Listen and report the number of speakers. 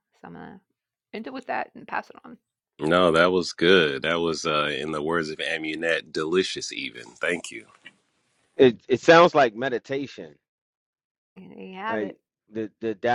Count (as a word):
three